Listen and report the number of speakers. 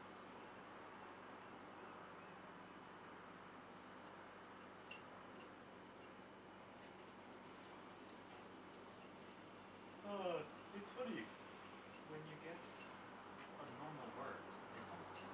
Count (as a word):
one